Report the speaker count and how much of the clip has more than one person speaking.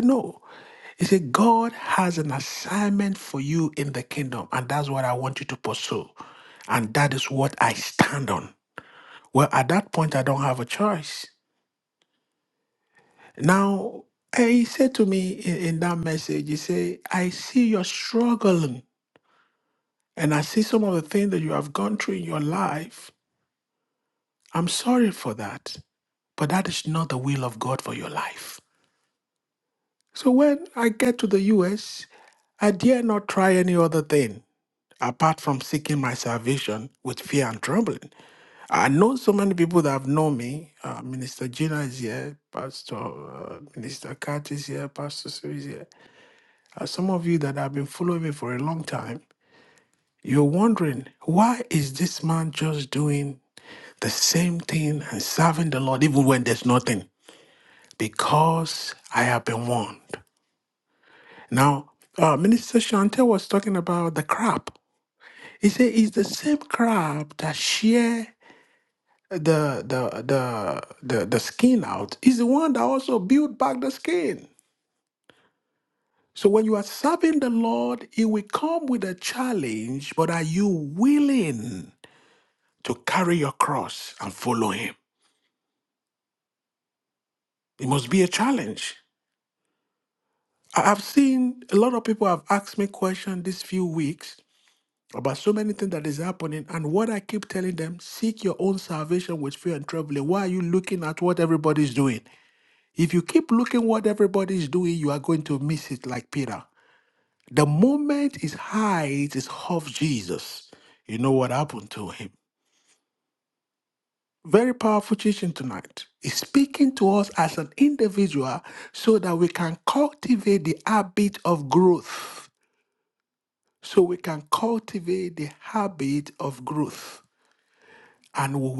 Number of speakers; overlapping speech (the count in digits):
1, no overlap